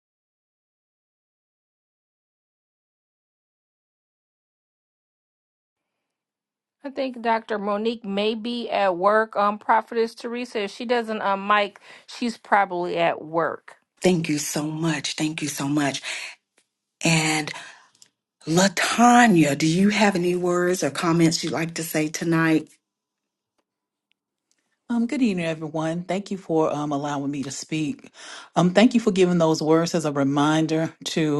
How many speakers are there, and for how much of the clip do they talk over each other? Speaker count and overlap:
3, no overlap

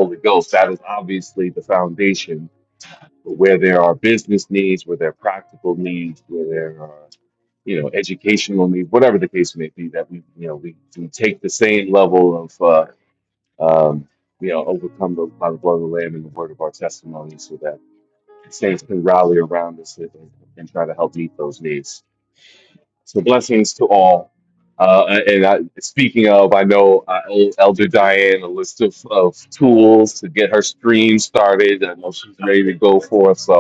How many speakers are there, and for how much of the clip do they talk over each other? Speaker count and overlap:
1, no overlap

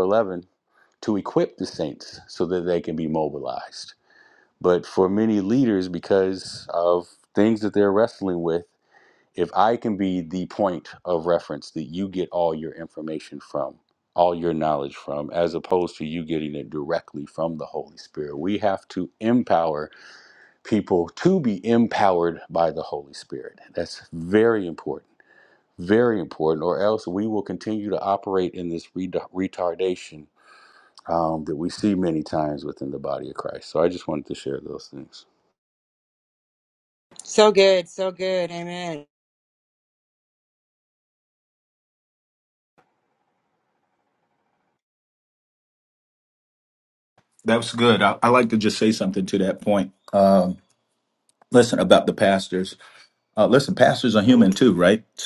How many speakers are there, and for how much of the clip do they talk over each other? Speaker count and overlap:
3, no overlap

